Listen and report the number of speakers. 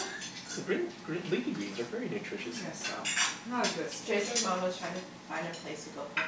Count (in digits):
3